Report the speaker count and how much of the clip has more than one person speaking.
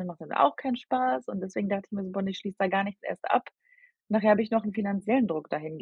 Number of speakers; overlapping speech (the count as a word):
one, no overlap